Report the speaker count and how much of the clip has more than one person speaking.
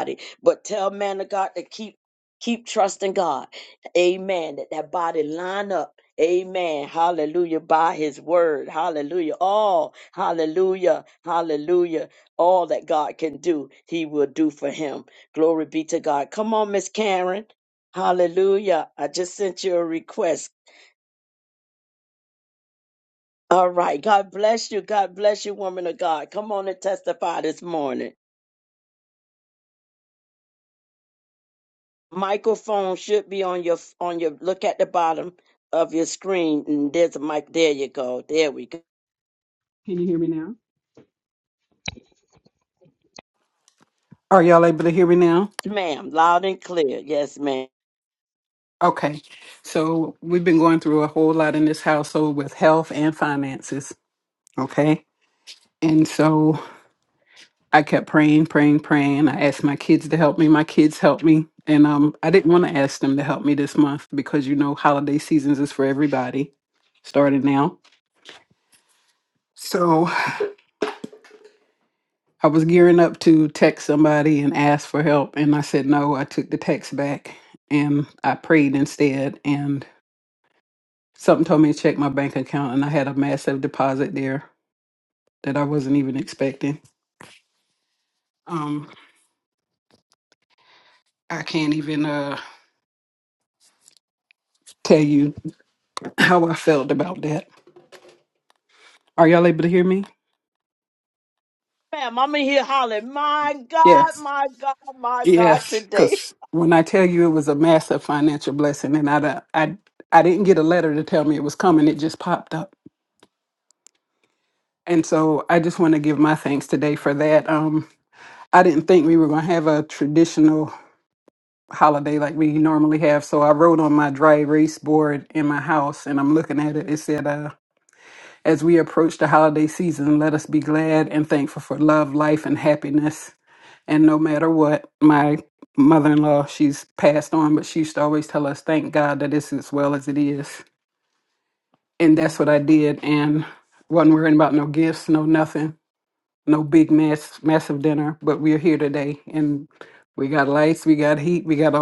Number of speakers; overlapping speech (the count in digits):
2, about 1%